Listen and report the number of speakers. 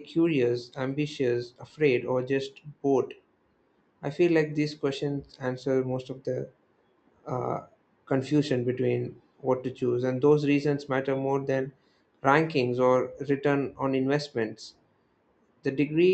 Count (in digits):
1